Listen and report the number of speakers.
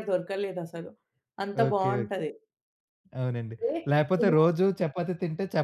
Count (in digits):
2